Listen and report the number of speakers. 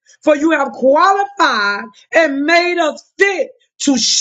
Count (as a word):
one